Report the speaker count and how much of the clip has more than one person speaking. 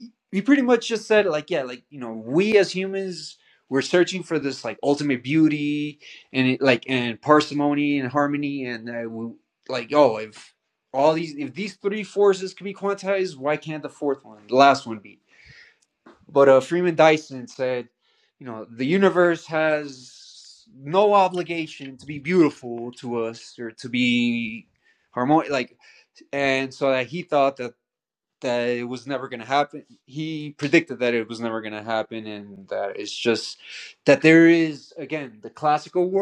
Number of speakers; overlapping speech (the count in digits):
1, no overlap